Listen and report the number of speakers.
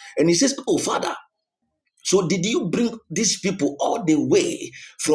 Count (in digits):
1